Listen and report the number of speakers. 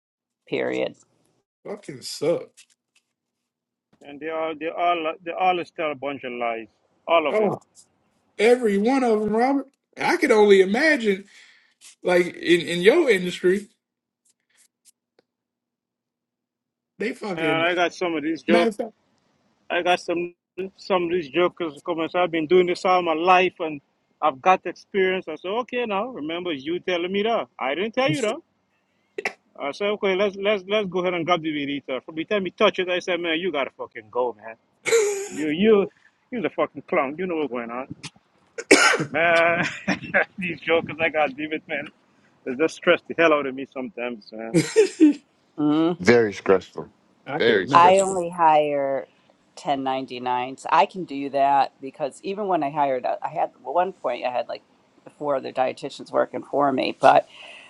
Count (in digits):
4